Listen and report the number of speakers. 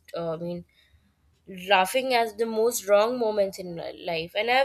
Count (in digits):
1